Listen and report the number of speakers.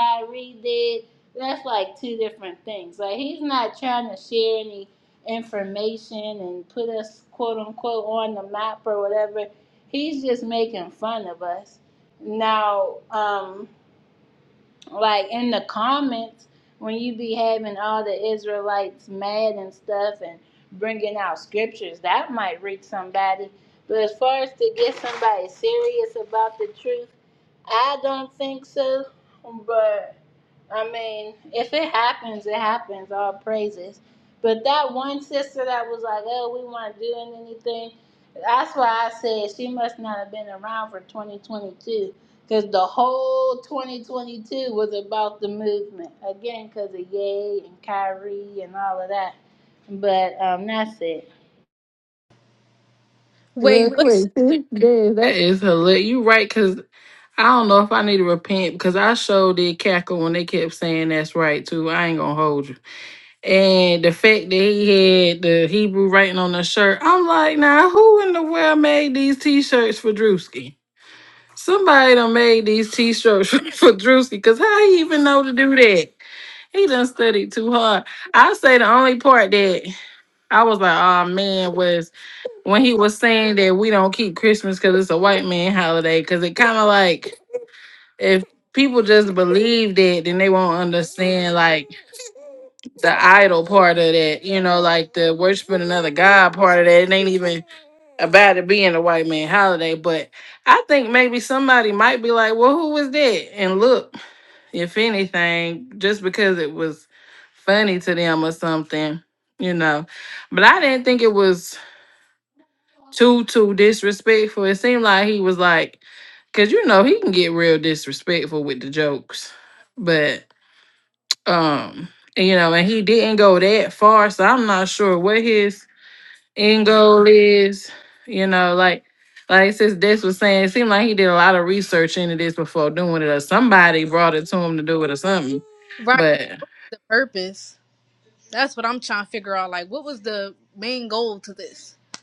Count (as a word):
three